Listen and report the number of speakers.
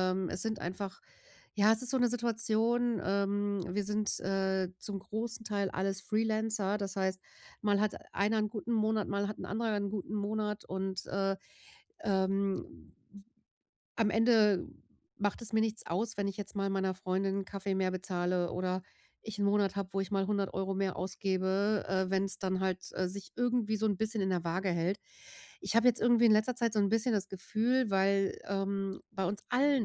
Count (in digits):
1